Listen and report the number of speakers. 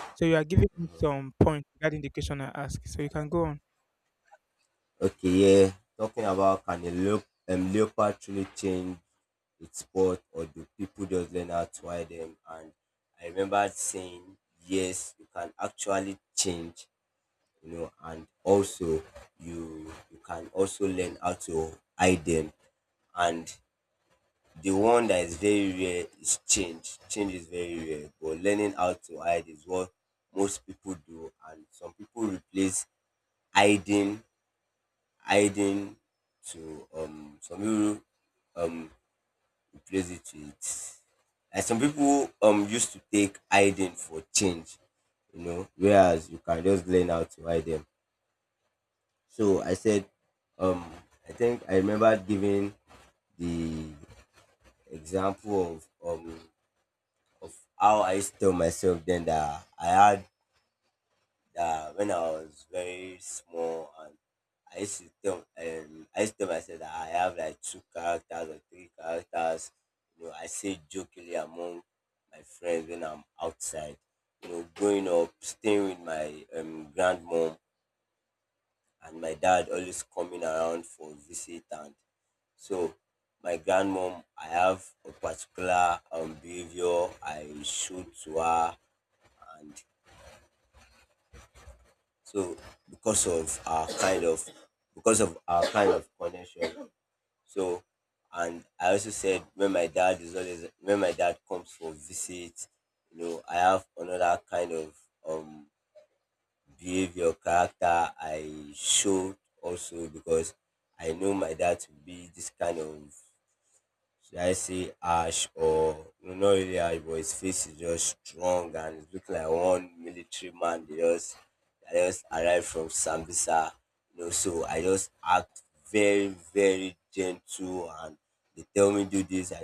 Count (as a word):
two